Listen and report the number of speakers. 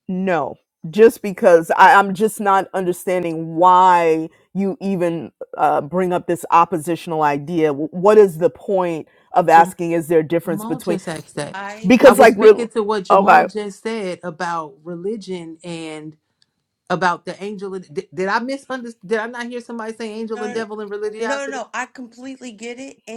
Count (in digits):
3